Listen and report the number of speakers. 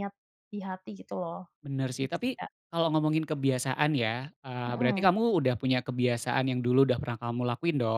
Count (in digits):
2